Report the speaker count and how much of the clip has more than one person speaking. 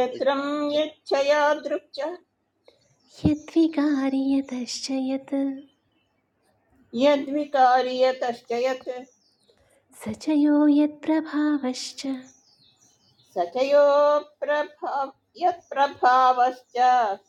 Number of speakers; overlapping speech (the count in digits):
2, no overlap